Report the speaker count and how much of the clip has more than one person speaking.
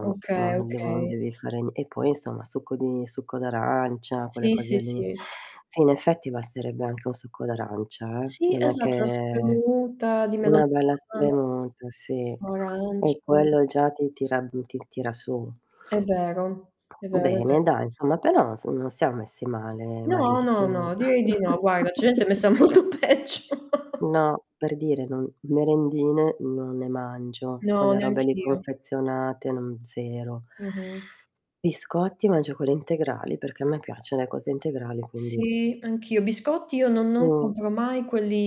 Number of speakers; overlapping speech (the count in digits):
2, about 18%